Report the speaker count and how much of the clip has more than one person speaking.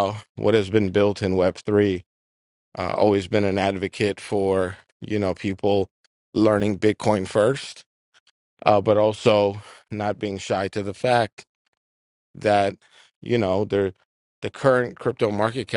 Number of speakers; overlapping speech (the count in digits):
1, no overlap